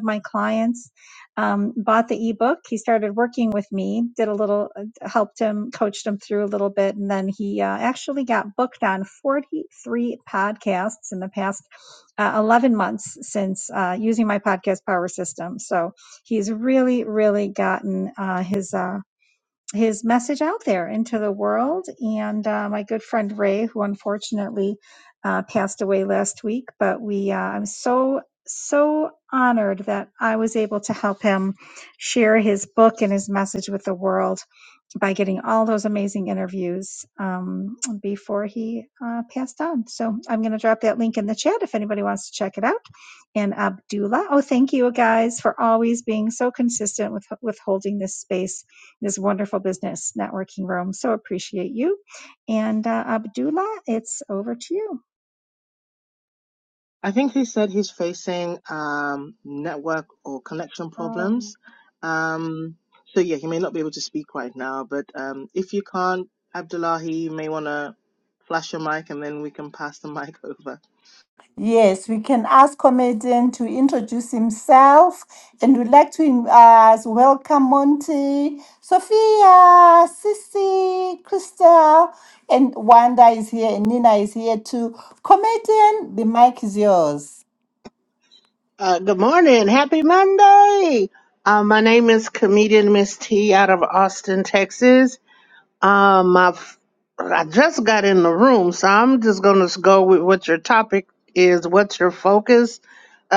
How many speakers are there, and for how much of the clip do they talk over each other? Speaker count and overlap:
4, under 1%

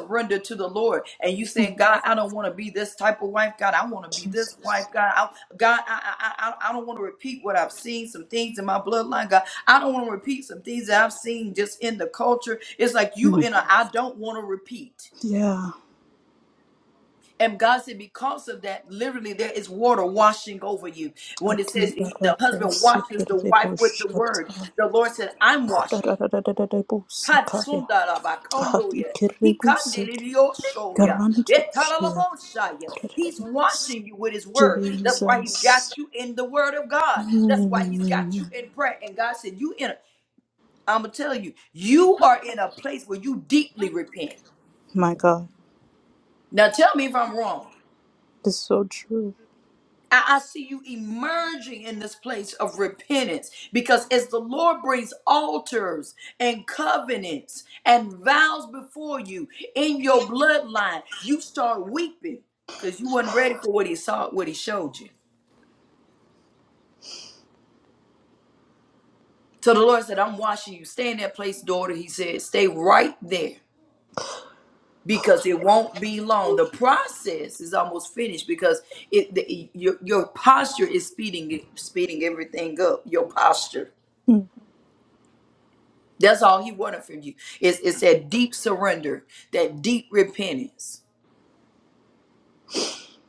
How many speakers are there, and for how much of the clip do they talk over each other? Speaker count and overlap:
2, about 11%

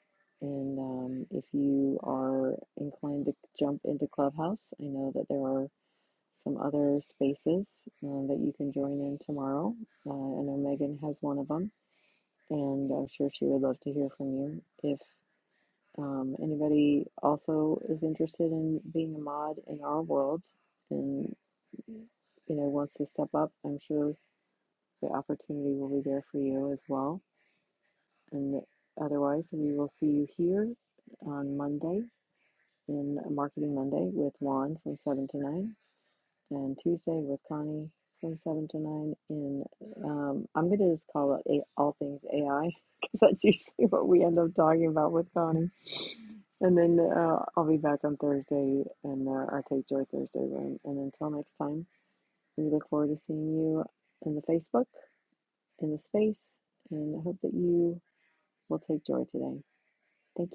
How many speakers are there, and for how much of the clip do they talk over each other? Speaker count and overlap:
1, no overlap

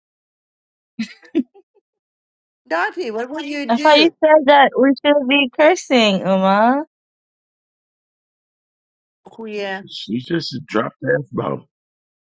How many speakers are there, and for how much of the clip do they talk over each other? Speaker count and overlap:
3, about 3%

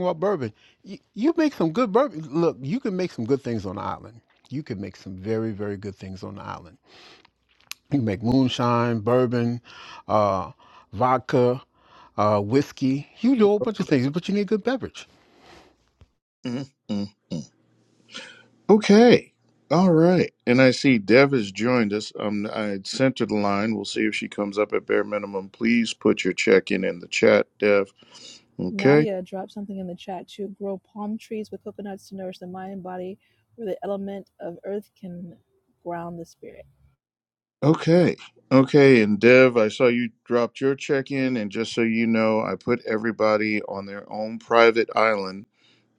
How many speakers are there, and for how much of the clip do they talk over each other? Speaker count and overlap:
3, about 1%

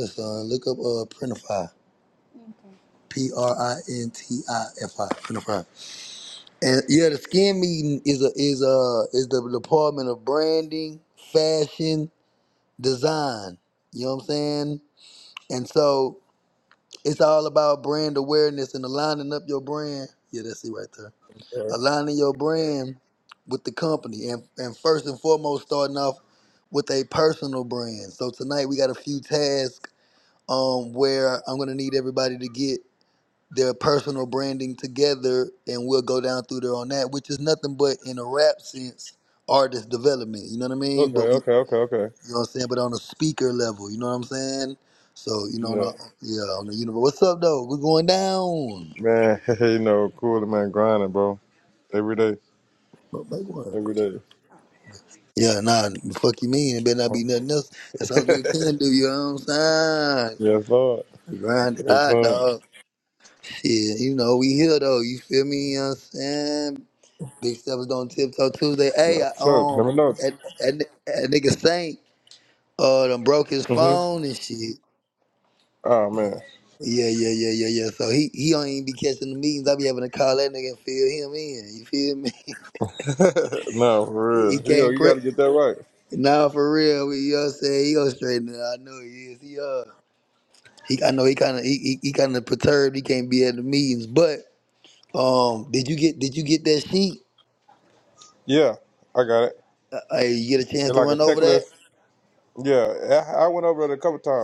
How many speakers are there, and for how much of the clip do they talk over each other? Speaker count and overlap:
2, about 4%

